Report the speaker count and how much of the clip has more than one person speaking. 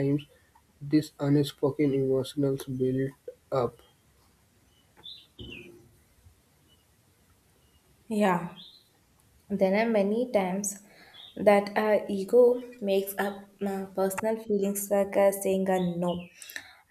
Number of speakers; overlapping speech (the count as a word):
two, no overlap